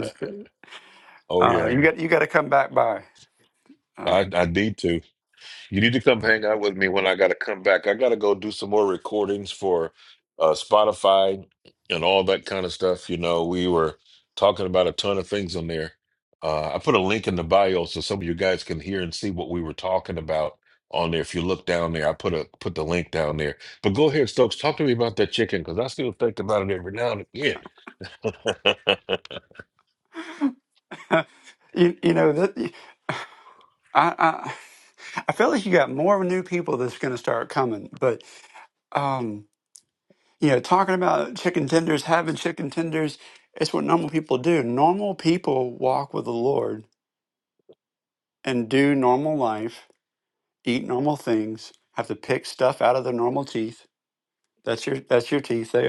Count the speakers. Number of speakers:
two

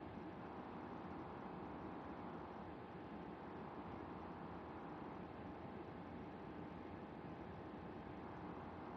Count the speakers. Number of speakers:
zero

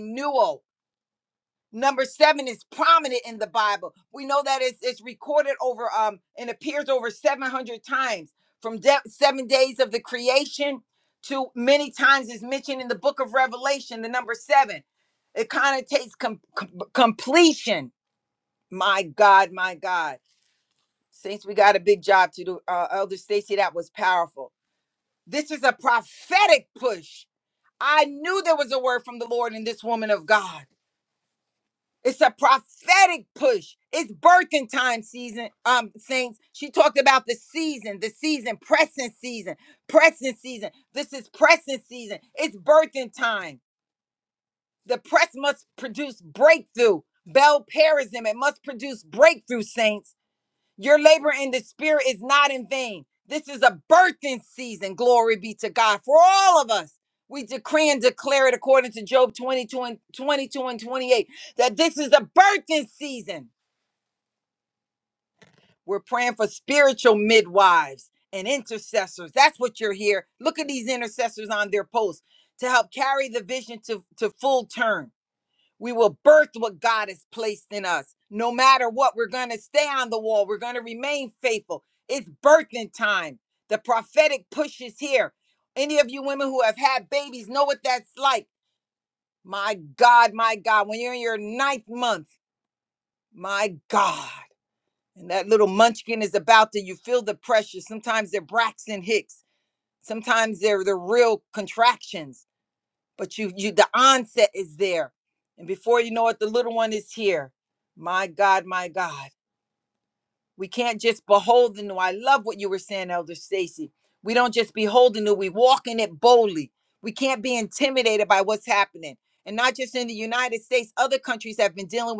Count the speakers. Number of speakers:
one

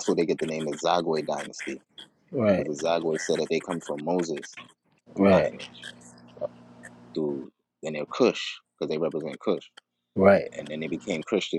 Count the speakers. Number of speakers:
two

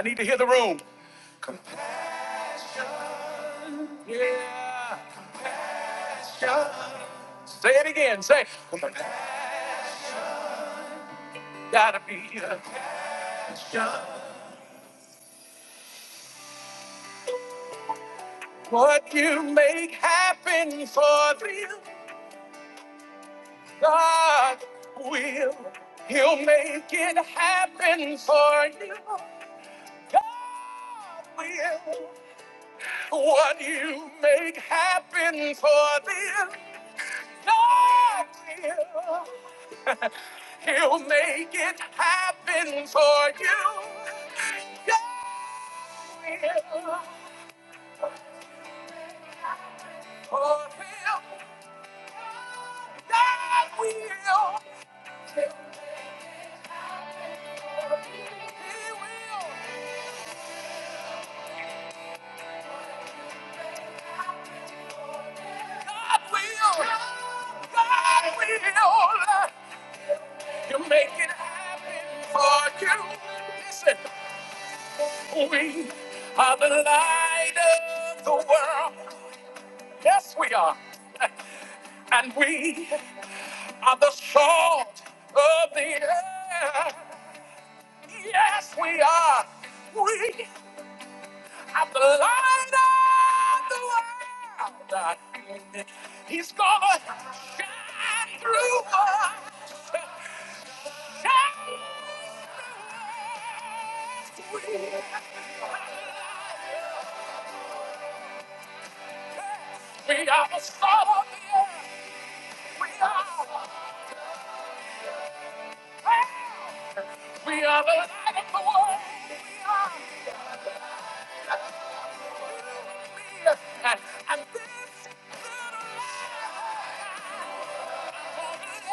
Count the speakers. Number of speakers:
one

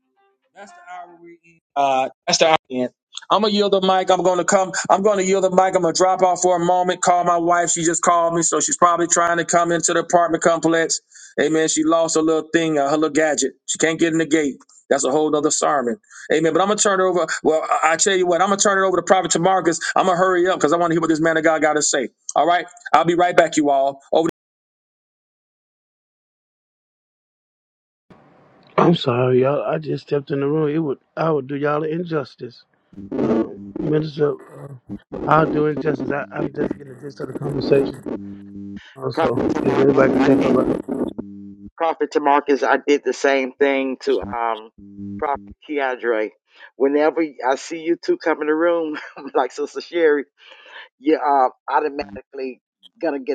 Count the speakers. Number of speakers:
three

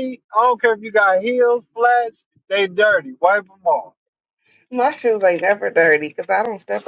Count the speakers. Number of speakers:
two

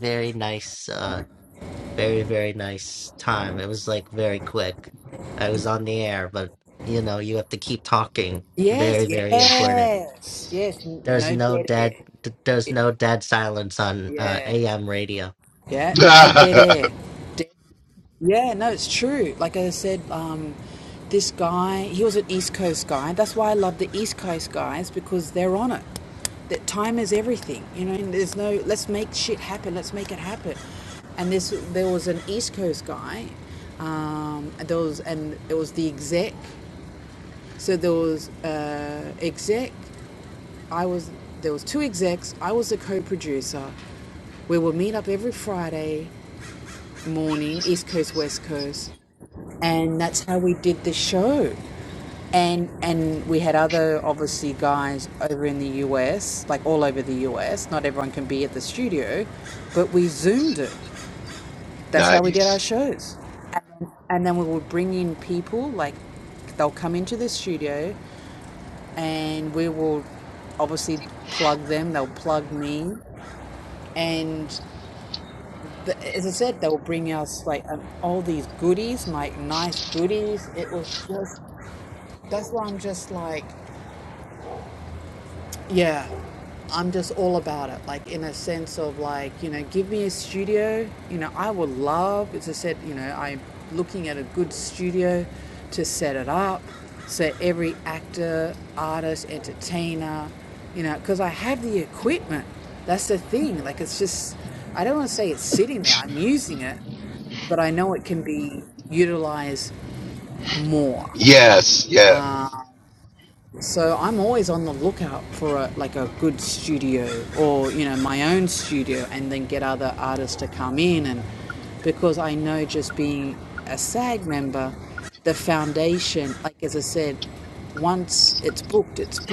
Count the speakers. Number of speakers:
three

